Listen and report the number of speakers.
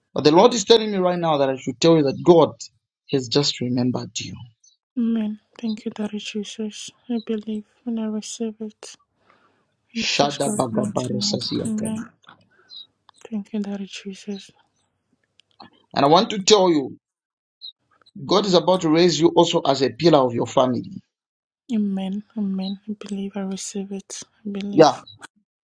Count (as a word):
two